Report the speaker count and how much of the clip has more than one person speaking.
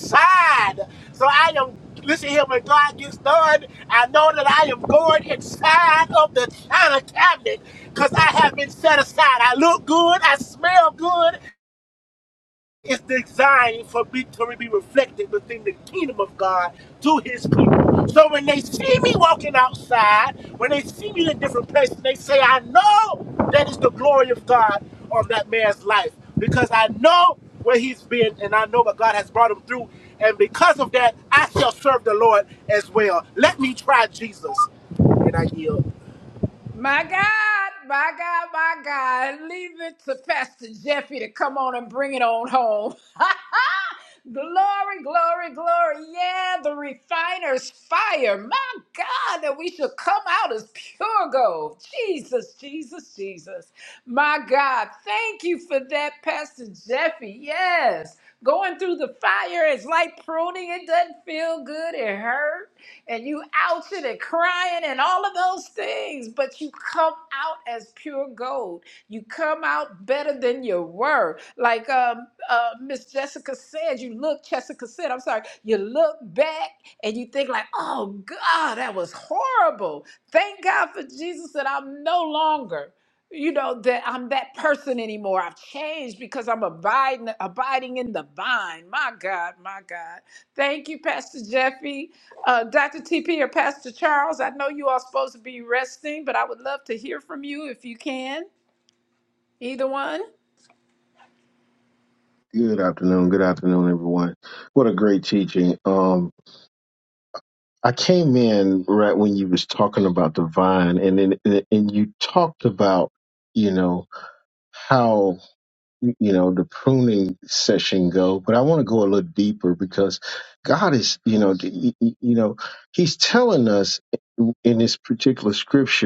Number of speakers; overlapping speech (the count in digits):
3, no overlap